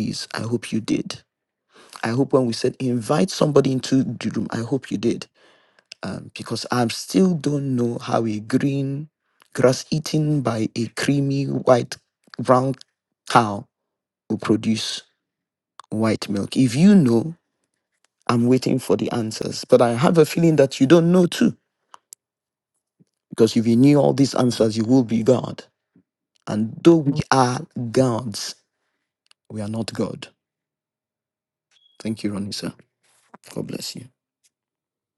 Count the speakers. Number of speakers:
one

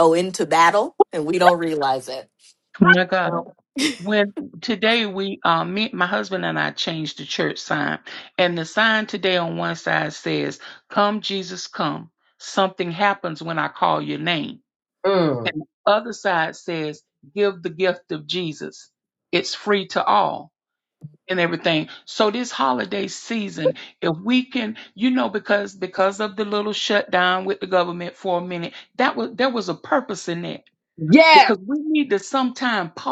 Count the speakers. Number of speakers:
three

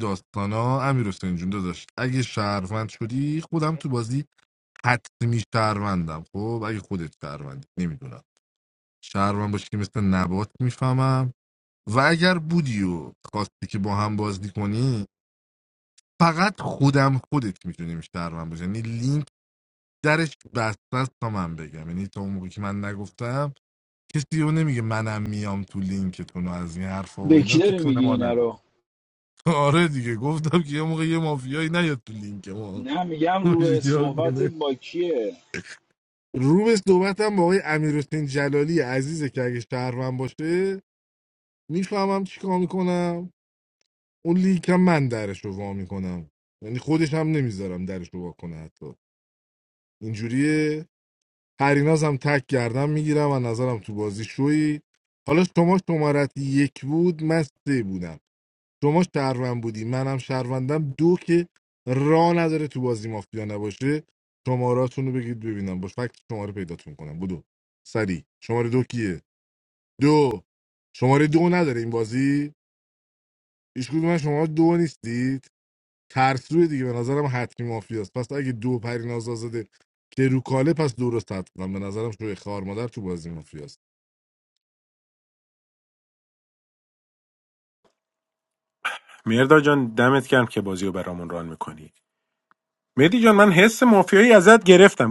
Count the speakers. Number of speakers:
three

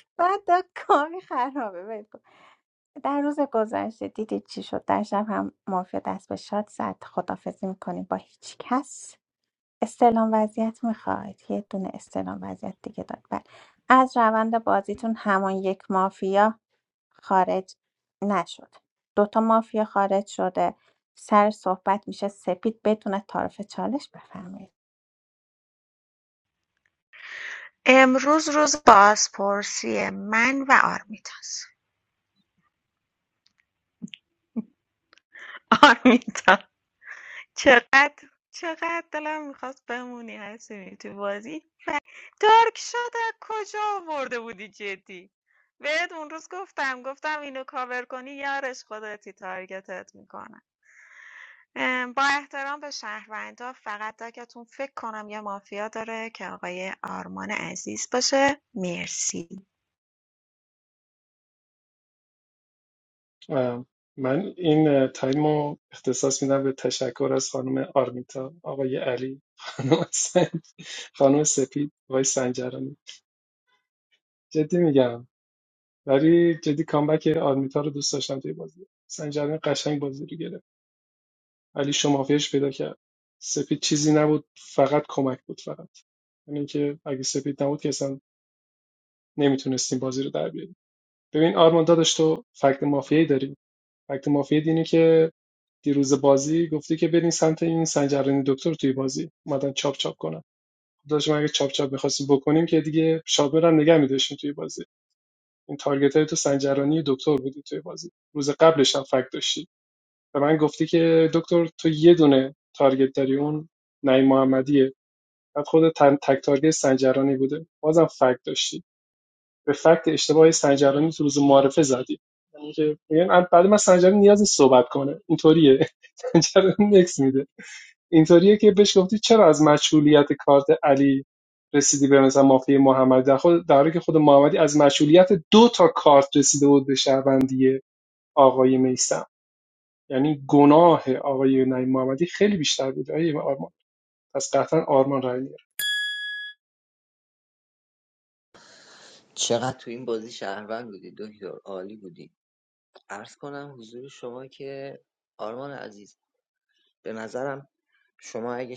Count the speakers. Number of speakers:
four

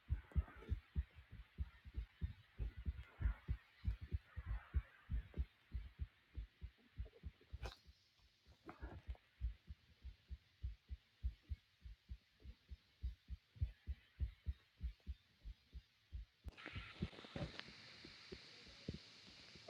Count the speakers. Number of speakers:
zero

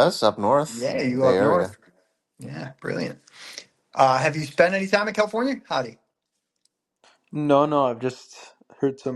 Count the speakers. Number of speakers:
three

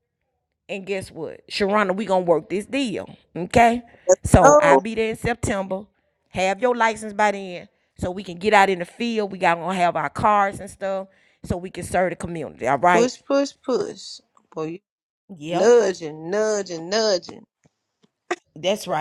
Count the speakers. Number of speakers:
two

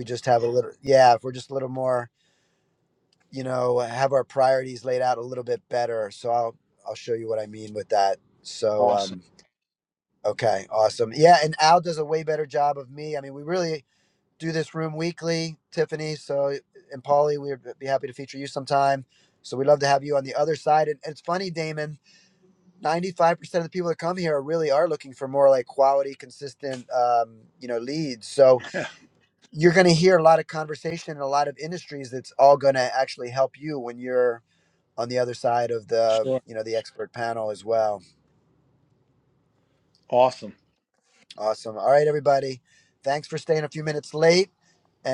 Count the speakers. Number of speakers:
two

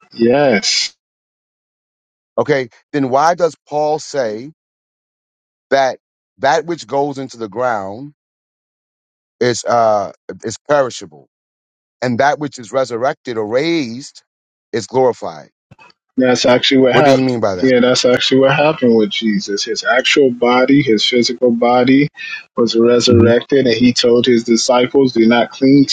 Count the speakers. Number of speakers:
two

